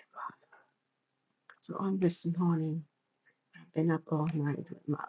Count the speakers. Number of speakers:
1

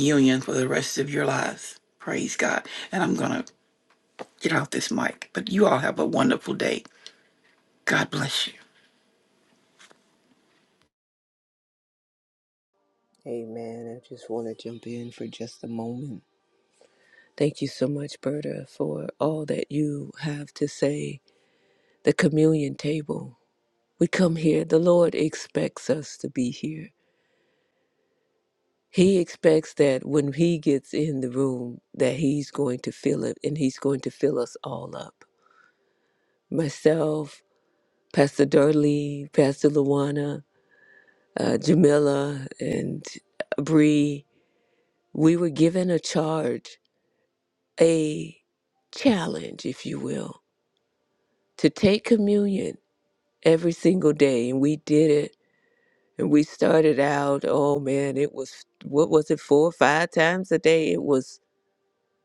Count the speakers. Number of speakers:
2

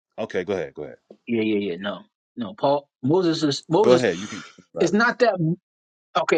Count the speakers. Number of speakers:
2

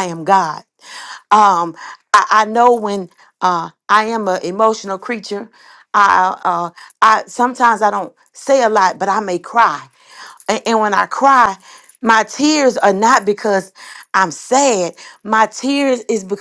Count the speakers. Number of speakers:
1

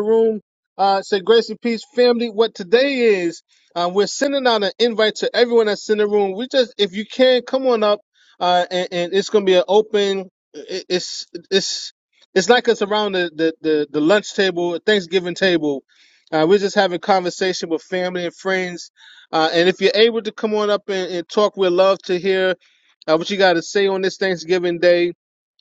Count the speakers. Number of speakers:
1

